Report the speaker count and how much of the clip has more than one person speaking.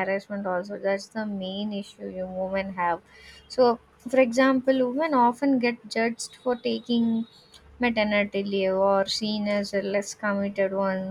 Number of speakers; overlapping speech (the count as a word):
one, no overlap